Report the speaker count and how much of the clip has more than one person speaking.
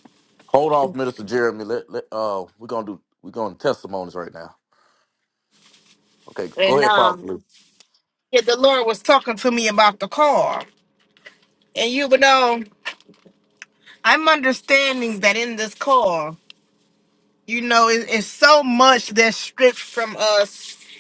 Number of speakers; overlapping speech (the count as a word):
two, about 3%